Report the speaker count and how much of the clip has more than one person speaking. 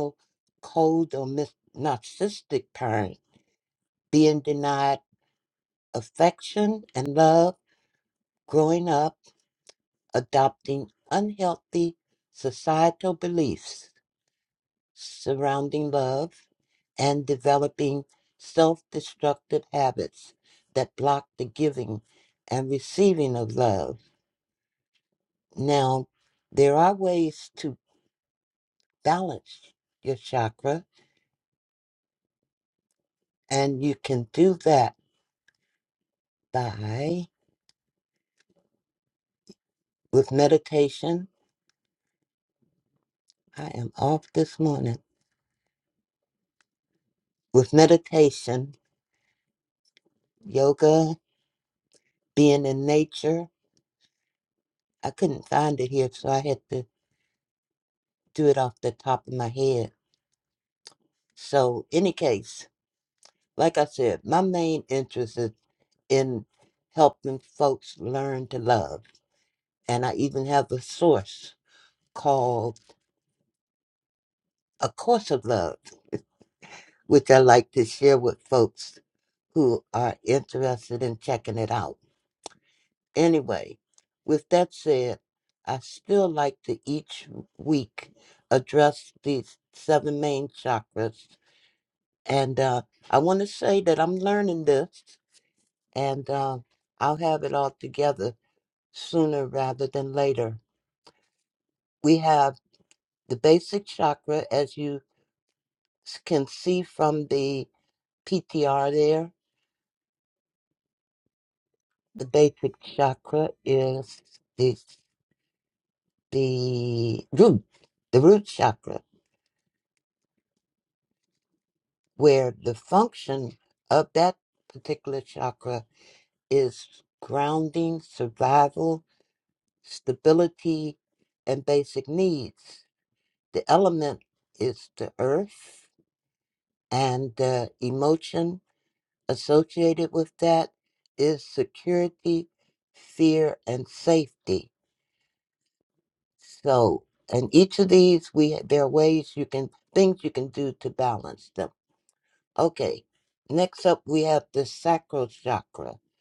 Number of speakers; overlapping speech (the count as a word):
one, no overlap